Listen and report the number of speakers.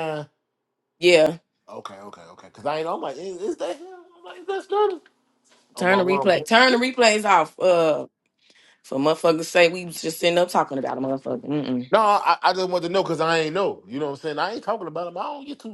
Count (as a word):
two